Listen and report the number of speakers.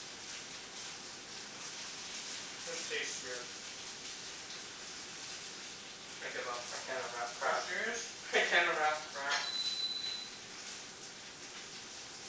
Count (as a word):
two